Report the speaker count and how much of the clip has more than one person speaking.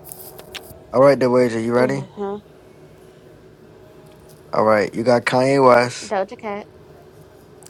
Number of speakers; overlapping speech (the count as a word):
two, about 4%